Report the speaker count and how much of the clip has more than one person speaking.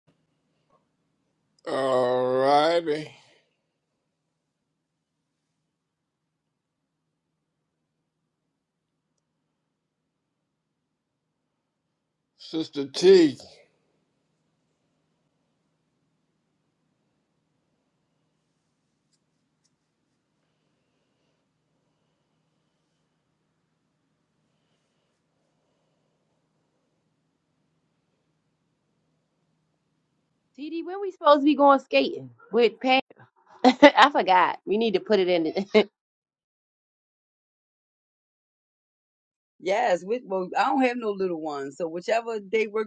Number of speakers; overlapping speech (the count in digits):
3, no overlap